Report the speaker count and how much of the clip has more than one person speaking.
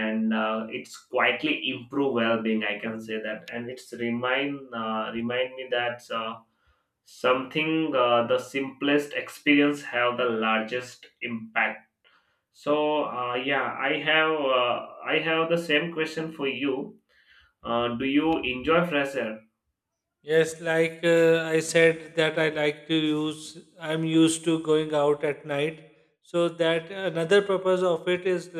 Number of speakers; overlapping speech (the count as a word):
two, no overlap